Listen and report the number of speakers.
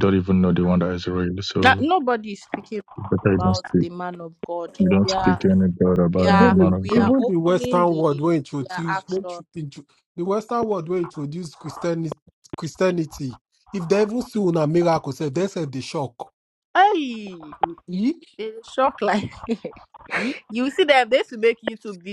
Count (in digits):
3